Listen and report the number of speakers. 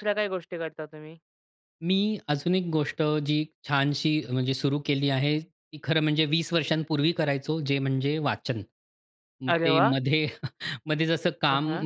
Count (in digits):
2